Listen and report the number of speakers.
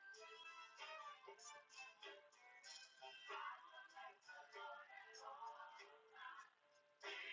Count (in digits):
0